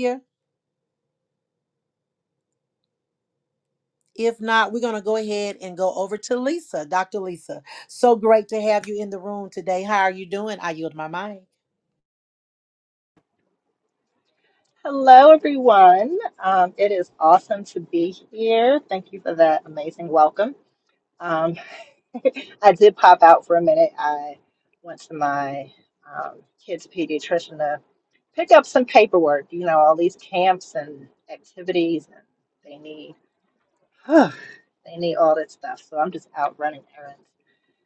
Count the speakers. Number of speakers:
2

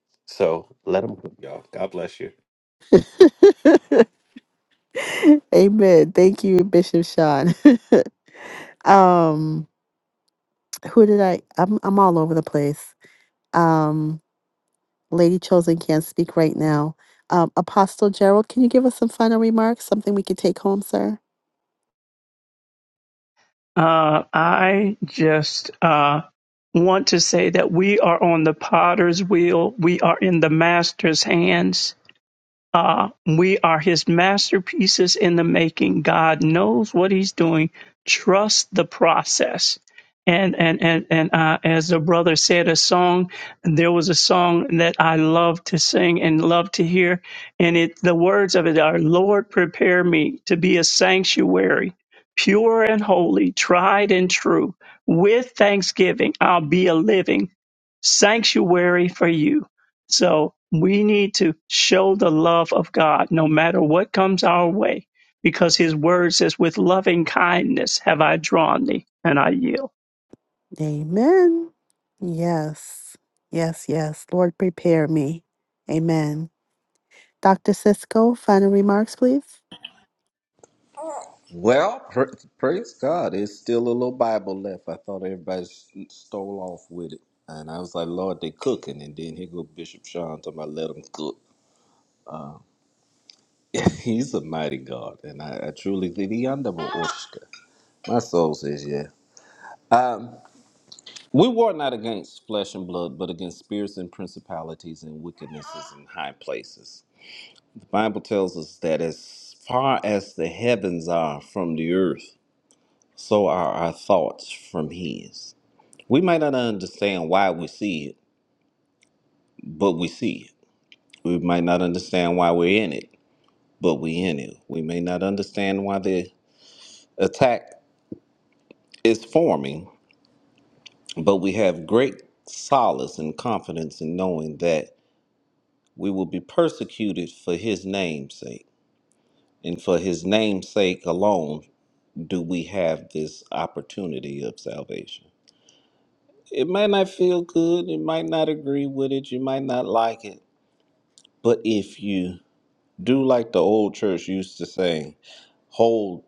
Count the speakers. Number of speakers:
4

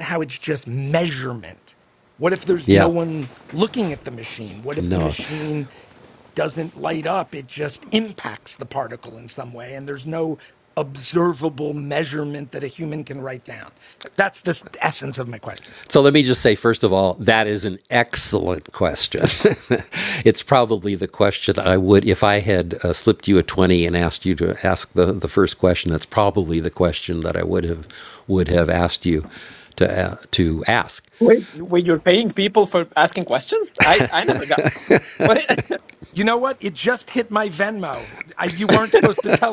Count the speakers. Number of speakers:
3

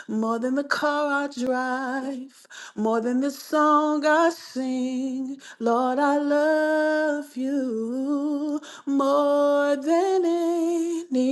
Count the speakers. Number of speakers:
1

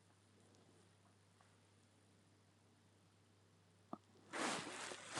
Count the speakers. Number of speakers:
0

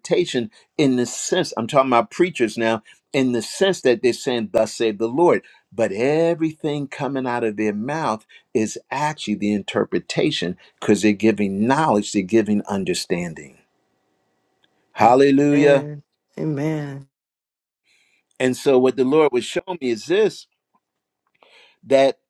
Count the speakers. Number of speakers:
2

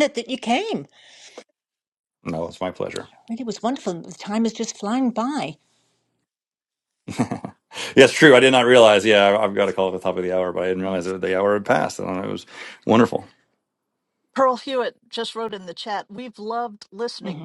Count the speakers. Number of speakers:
3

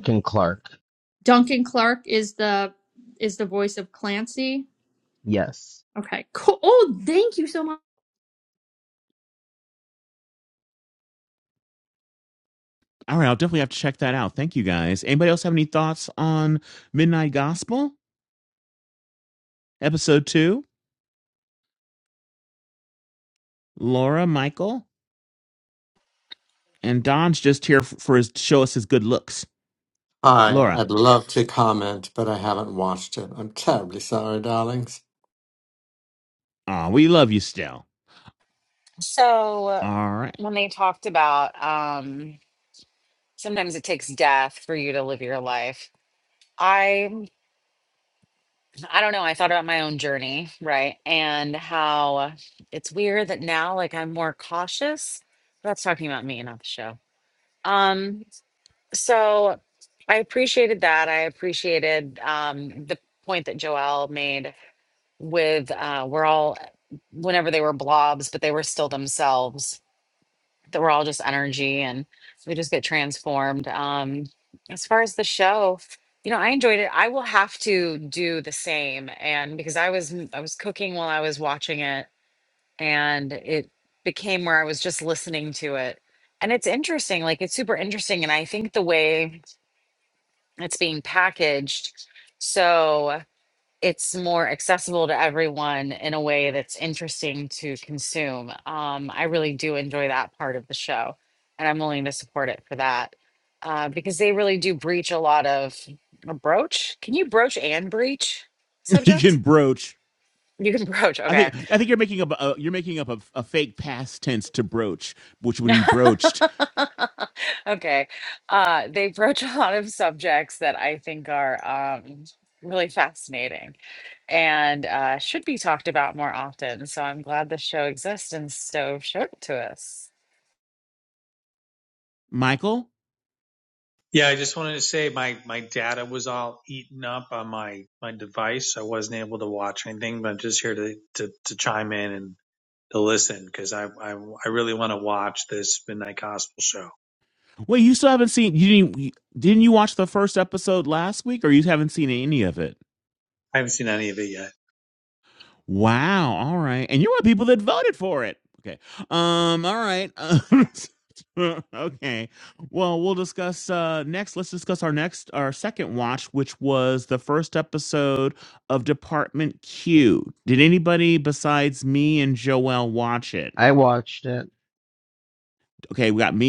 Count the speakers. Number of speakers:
6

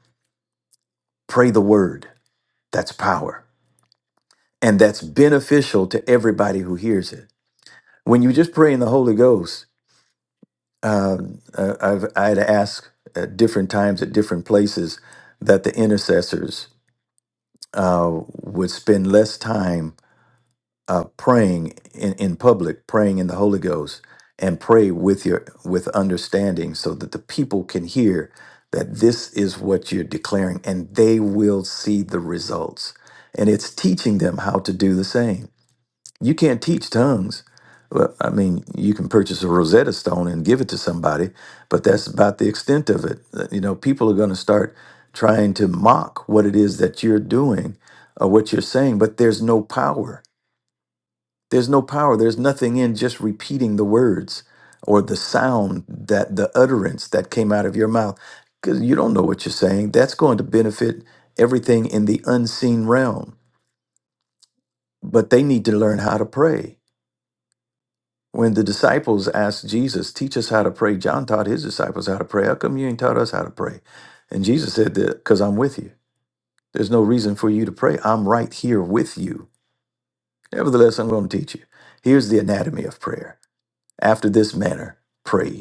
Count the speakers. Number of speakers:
1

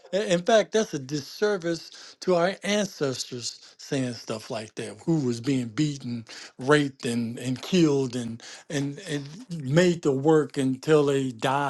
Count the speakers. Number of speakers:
1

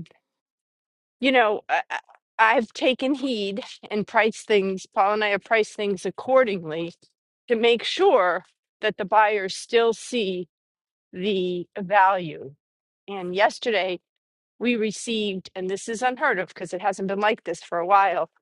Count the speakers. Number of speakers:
1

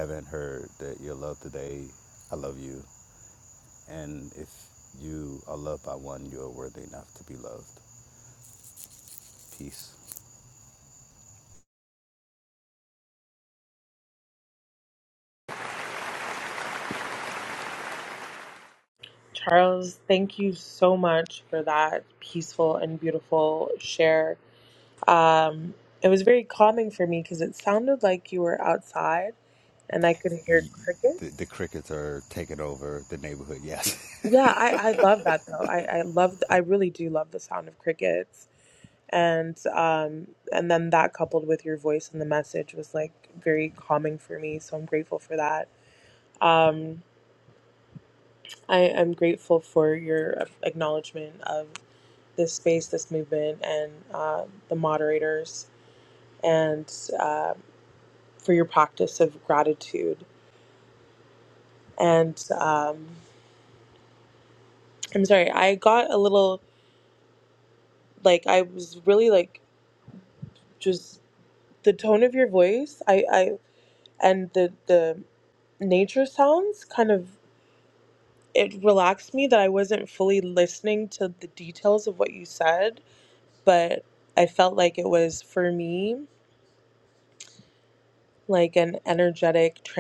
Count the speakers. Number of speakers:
2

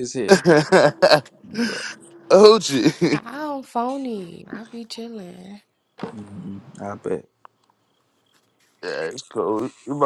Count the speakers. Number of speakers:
3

